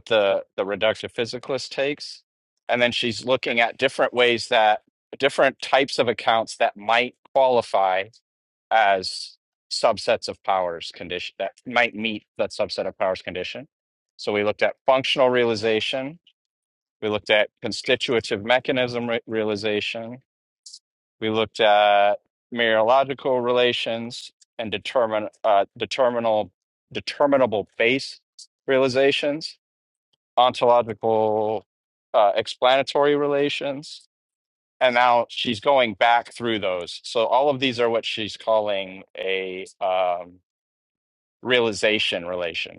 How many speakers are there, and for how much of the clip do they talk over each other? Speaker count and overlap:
one, no overlap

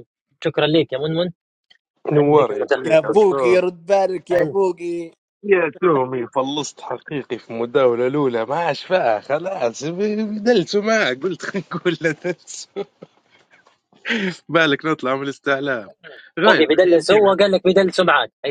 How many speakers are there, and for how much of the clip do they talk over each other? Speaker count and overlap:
three, about 14%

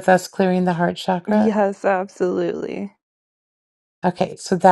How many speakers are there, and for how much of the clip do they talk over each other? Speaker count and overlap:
two, about 5%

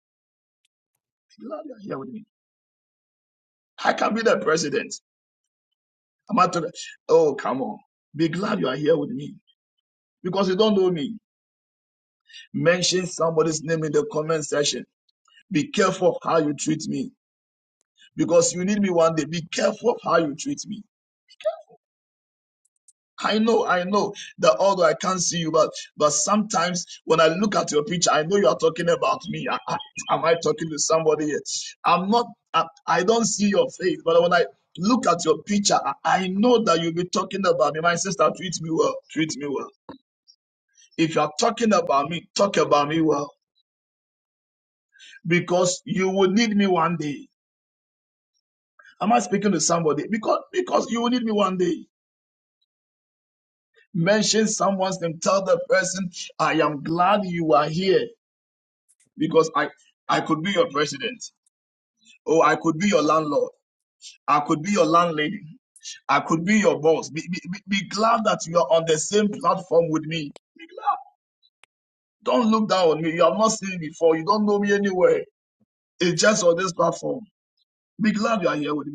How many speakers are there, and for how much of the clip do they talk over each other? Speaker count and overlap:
one, no overlap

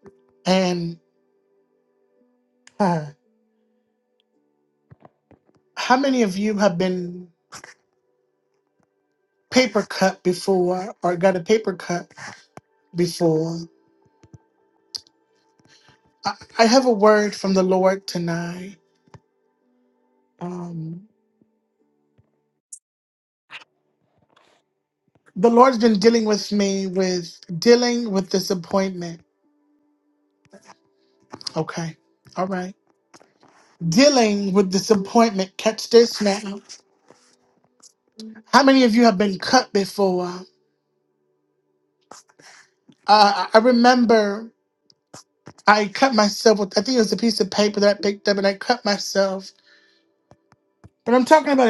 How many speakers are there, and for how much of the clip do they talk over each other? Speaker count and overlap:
one, no overlap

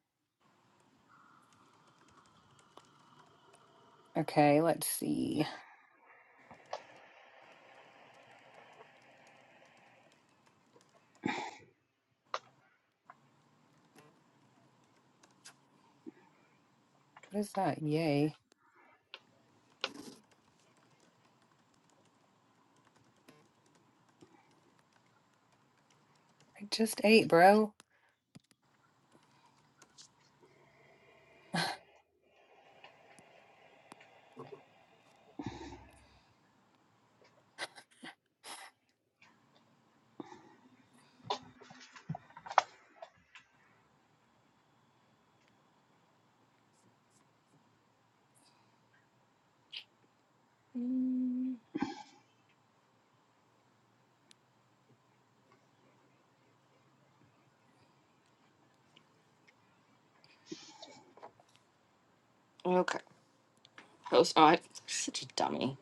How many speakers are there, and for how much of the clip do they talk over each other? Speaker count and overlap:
two, no overlap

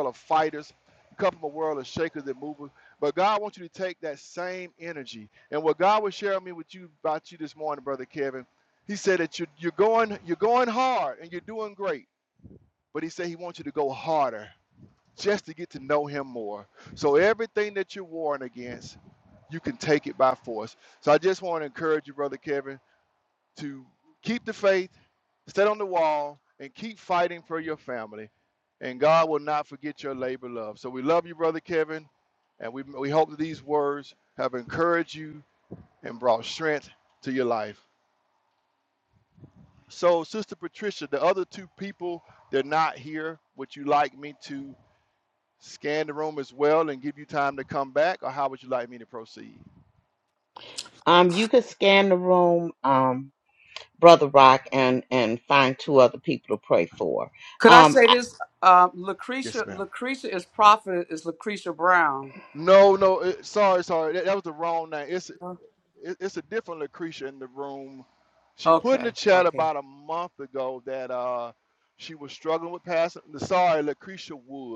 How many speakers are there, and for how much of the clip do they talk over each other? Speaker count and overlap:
three, about 2%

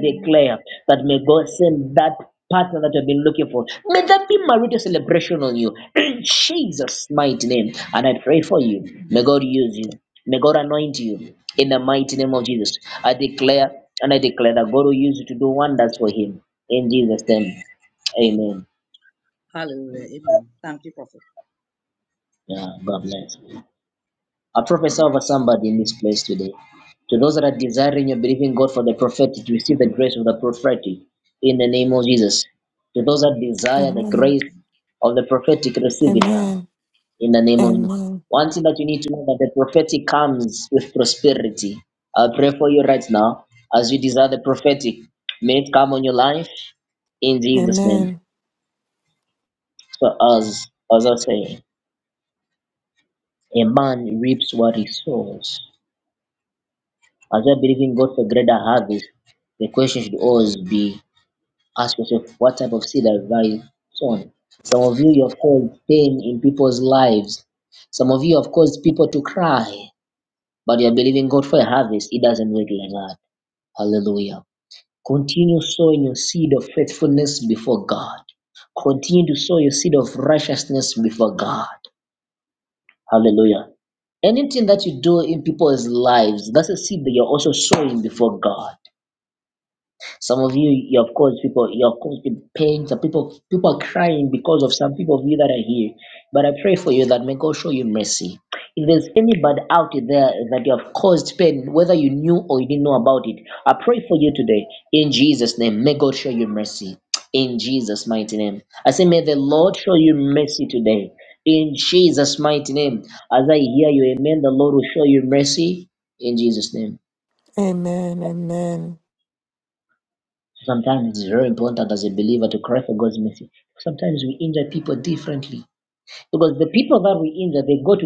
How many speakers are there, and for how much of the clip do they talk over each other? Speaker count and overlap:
three, about 2%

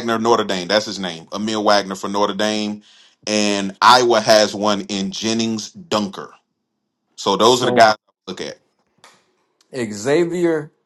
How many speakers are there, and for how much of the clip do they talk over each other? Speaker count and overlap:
two, about 4%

